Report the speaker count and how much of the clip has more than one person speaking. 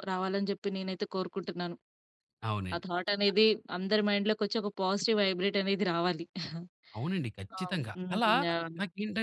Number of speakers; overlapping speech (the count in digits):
2, about 8%